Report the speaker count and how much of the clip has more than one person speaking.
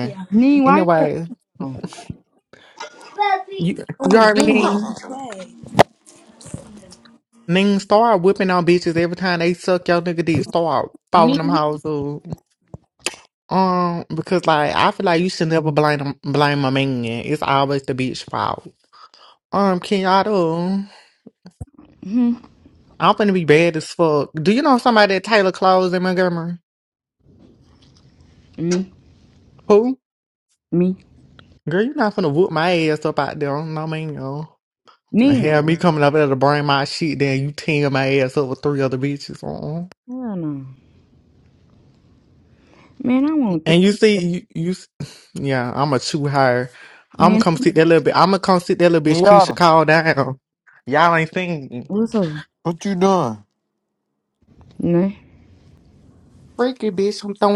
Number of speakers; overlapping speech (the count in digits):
4, about 5%